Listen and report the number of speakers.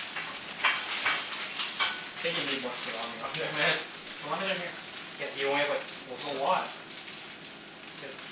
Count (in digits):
2